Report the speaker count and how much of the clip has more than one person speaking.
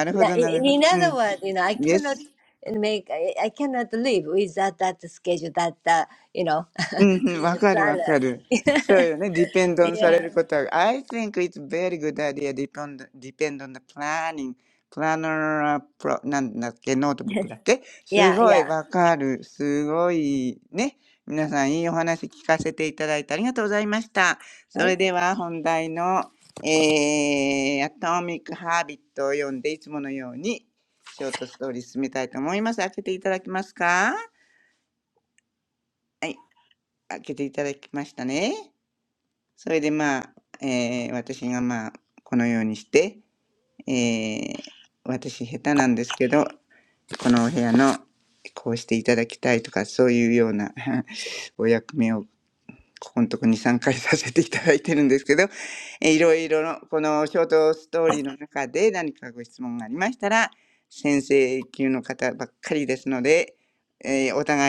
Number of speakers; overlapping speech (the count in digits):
2, about 4%